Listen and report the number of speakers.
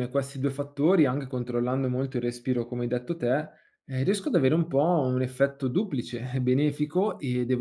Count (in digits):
1